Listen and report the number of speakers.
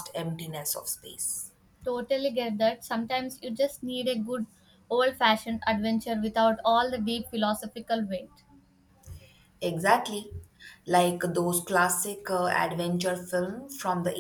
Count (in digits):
2